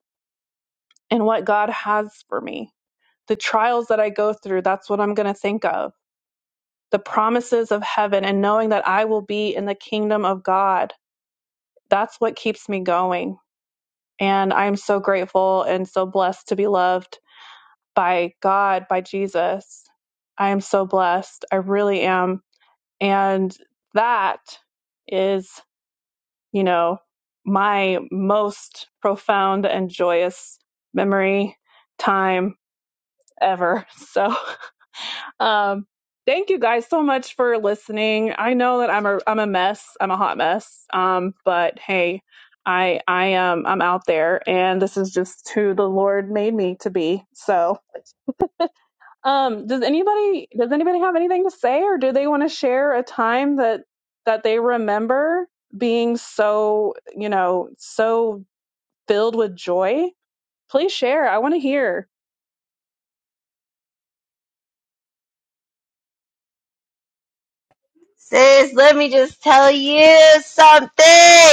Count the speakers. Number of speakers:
2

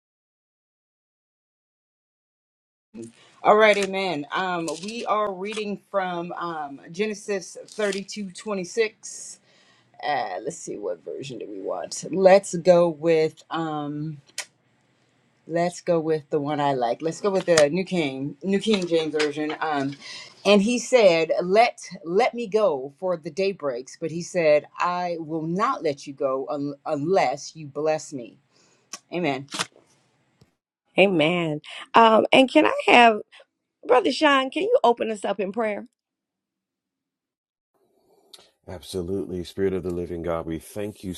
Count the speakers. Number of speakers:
3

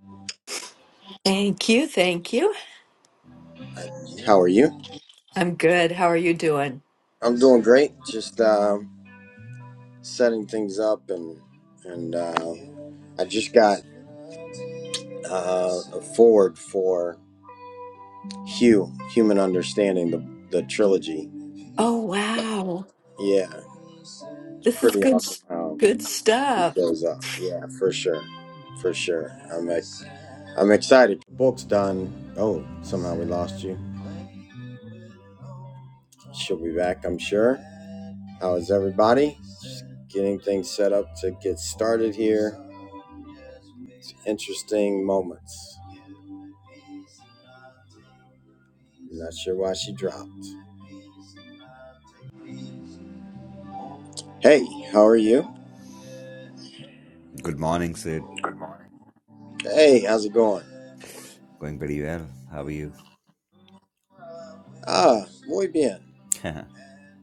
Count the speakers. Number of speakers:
3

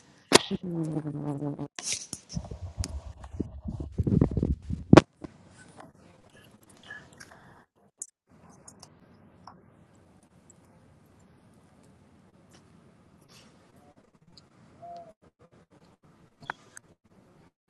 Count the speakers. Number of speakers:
0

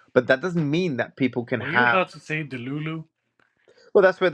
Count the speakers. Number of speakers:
2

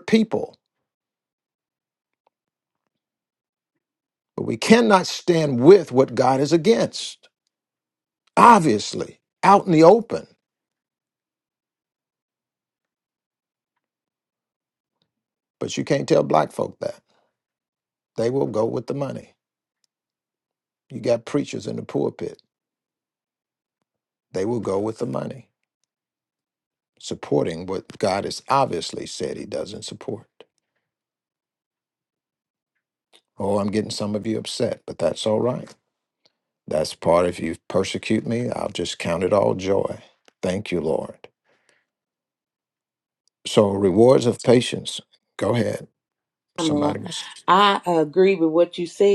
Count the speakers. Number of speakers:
2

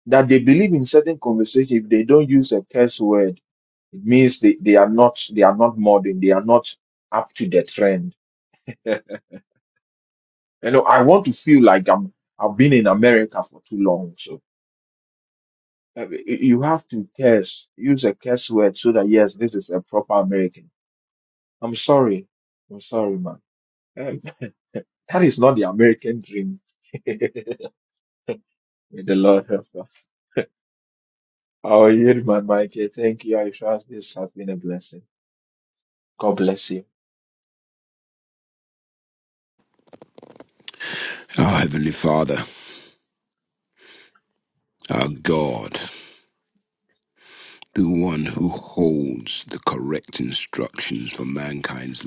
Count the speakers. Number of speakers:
2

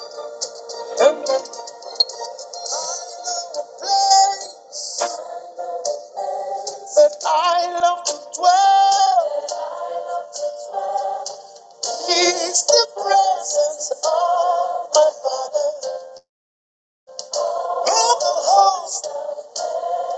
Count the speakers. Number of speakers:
1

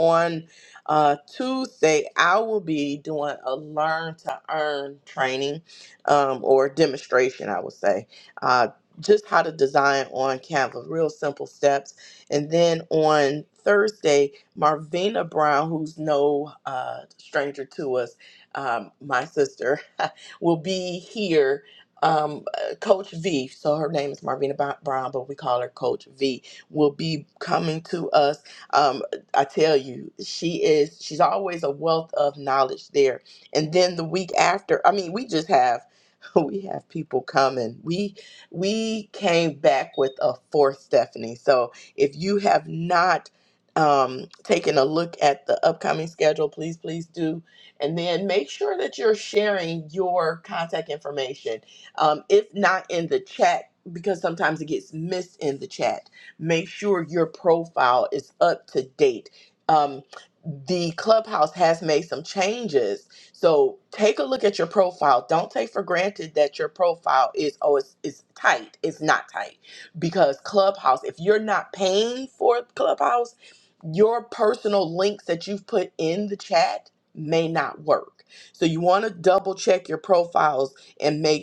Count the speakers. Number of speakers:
1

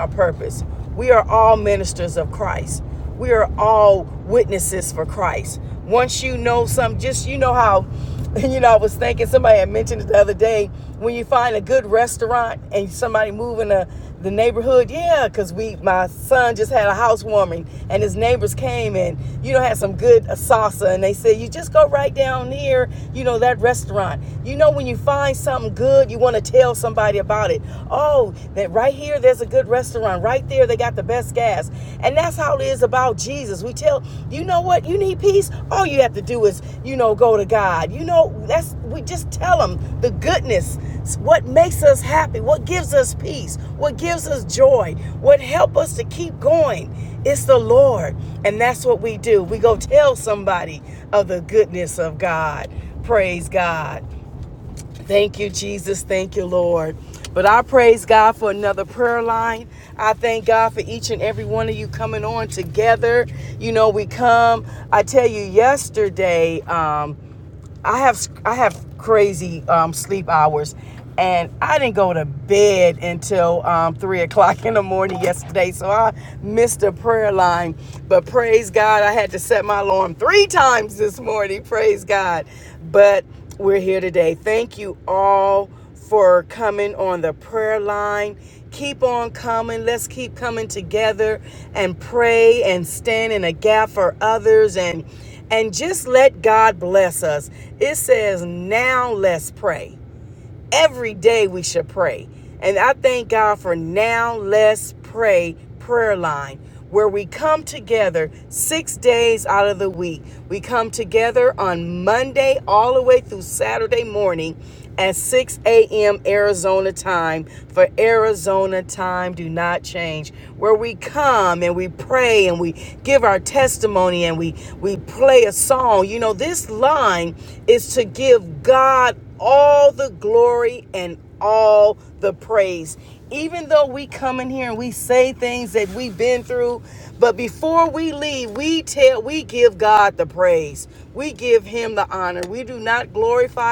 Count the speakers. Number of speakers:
1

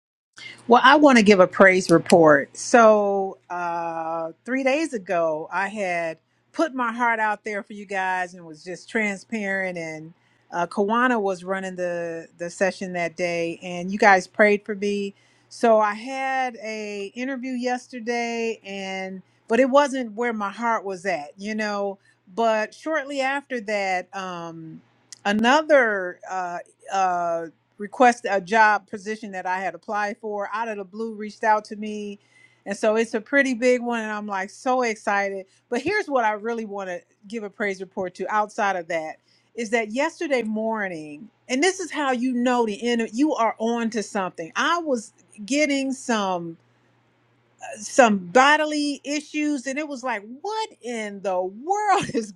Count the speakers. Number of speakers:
1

